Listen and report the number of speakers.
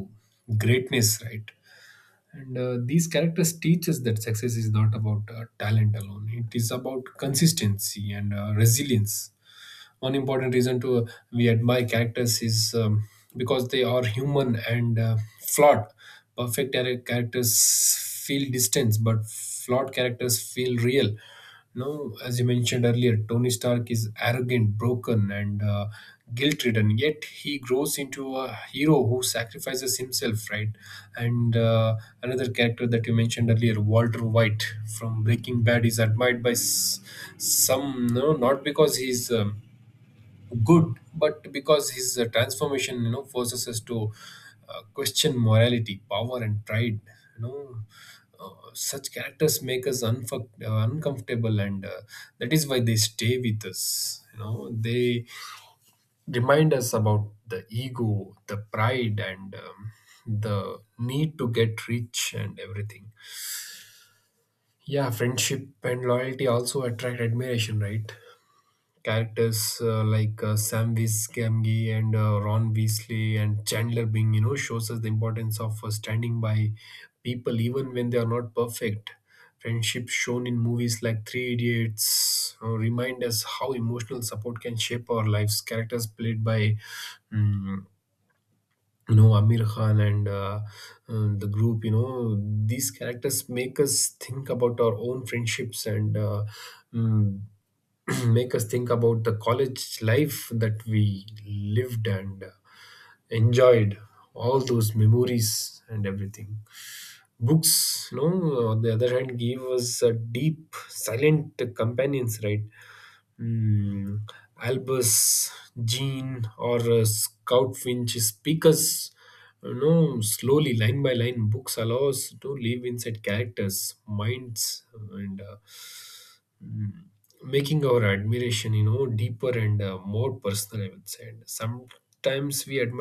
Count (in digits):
1